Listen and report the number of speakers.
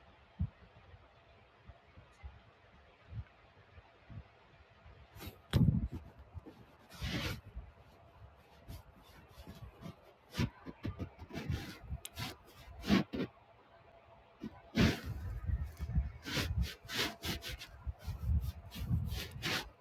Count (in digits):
0